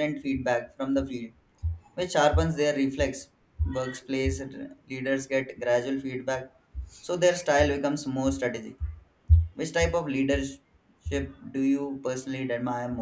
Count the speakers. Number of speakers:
1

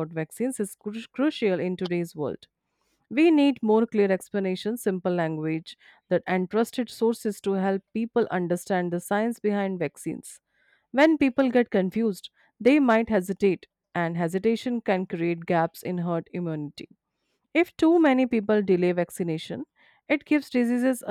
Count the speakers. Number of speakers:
1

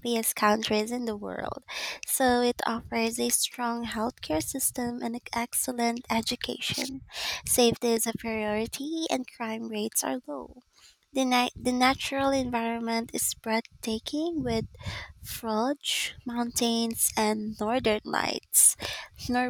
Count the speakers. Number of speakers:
1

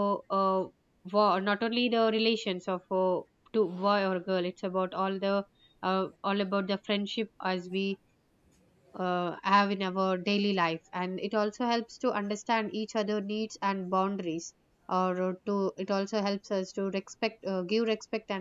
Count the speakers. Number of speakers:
1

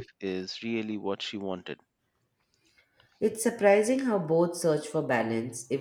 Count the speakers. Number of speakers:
2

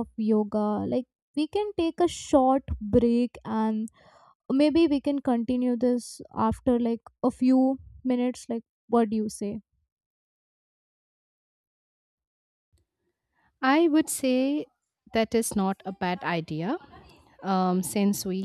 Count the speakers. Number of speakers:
2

